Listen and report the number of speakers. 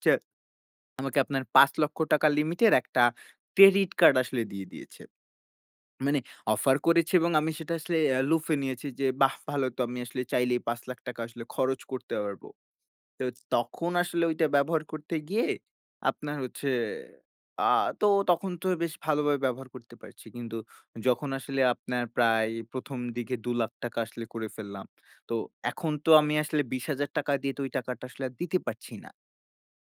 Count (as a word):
one